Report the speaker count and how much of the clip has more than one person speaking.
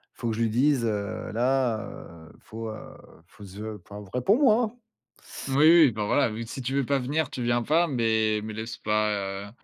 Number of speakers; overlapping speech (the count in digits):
2, no overlap